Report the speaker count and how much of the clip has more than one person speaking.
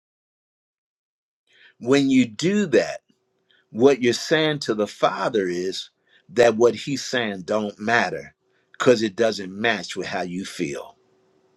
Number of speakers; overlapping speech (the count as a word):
one, no overlap